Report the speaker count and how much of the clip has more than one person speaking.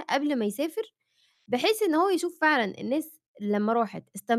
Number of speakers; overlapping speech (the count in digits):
1, no overlap